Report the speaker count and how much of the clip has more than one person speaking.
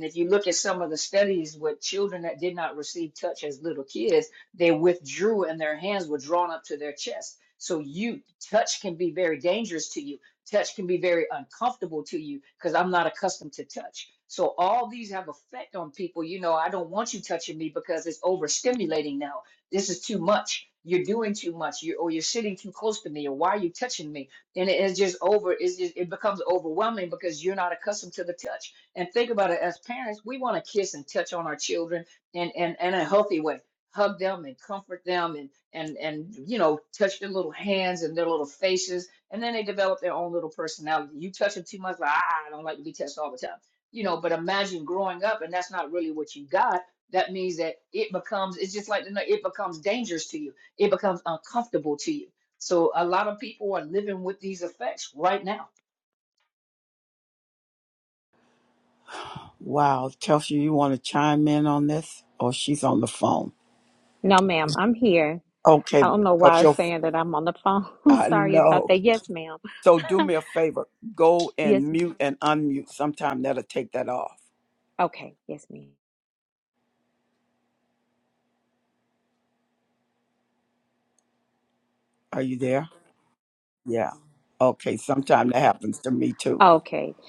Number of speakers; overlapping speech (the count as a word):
three, about 1%